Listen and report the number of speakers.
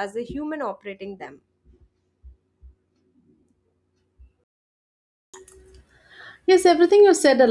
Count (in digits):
2